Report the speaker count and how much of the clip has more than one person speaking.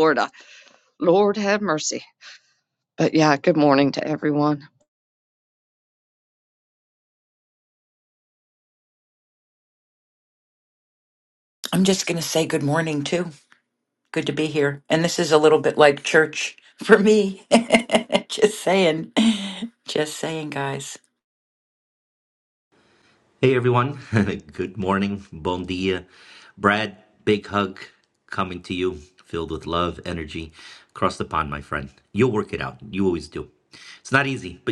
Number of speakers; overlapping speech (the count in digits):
3, no overlap